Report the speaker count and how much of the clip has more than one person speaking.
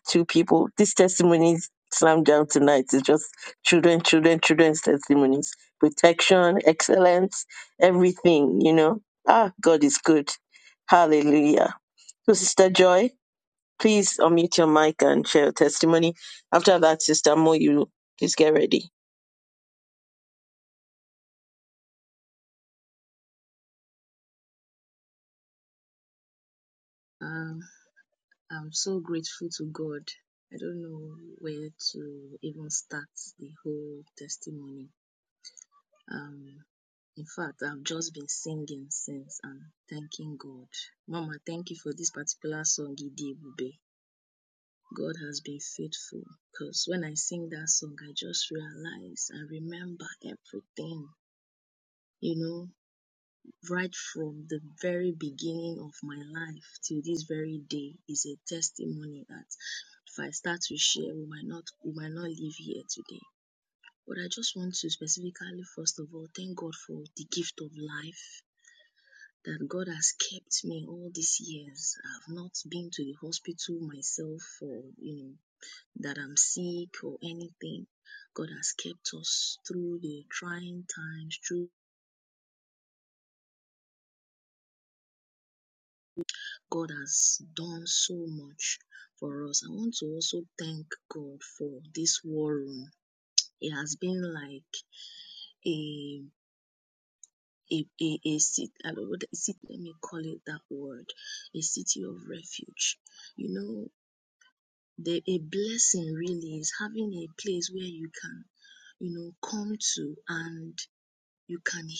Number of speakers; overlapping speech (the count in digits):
2, no overlap